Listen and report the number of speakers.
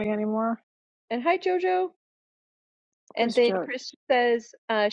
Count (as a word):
two